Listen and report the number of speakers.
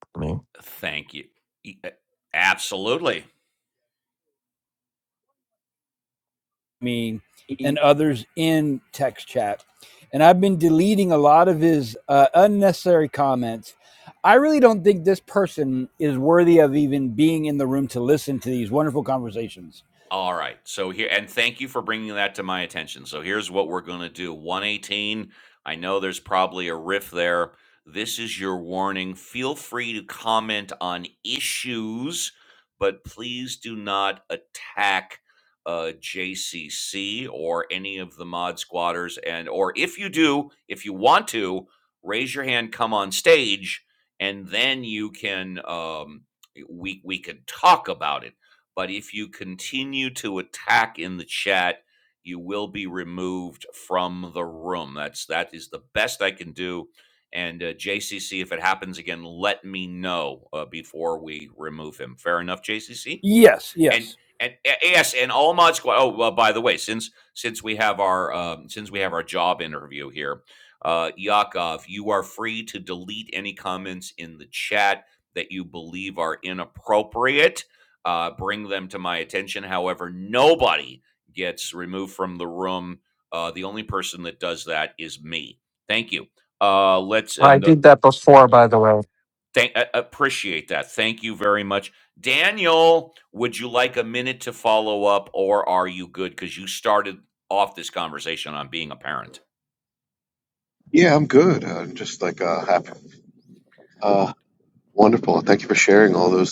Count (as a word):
four